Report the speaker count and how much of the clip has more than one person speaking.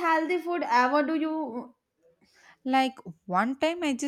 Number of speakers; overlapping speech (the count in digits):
2, no overlap